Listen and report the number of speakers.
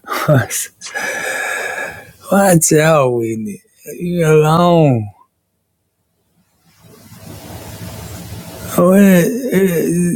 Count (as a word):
one